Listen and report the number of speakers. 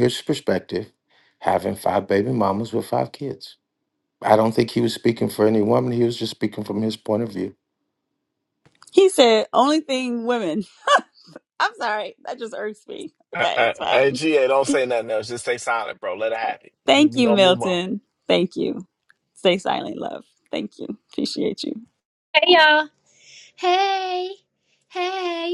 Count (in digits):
4